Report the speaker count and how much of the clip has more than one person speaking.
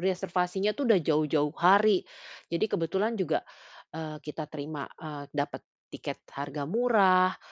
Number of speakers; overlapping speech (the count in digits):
1, no overlap